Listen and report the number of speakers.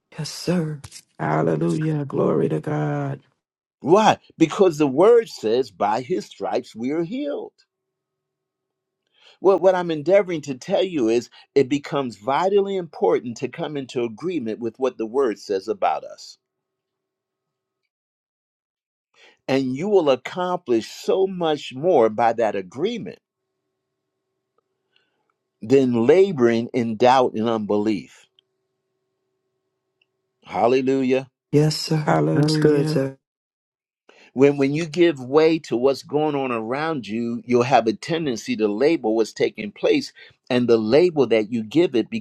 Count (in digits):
3